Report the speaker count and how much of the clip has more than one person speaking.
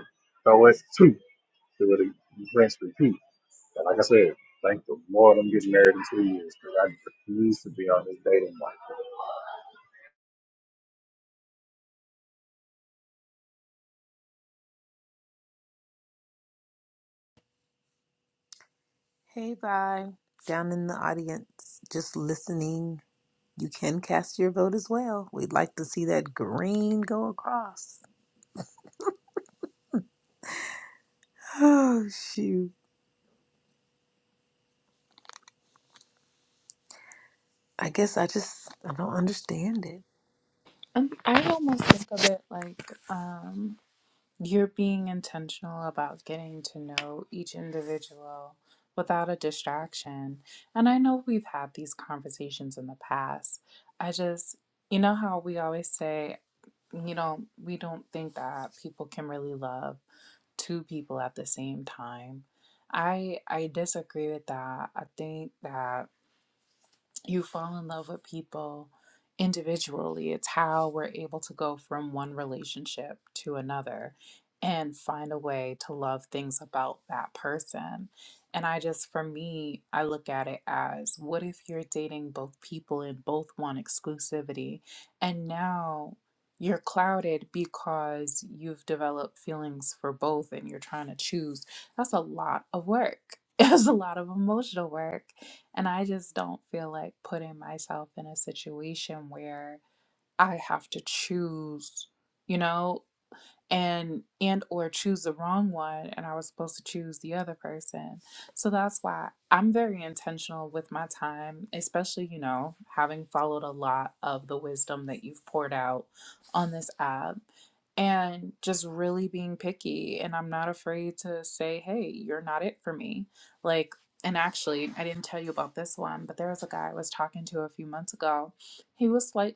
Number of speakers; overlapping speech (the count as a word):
three, no overlap